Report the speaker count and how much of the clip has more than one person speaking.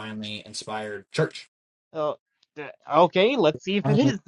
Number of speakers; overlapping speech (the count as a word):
two, about 7%